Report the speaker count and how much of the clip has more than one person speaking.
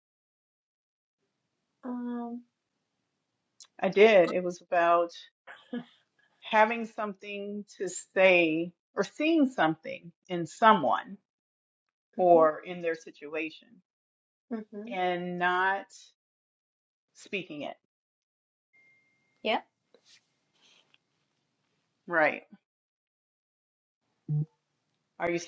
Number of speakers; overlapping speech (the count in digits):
2, about 1%